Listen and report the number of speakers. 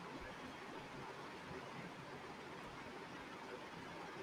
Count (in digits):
0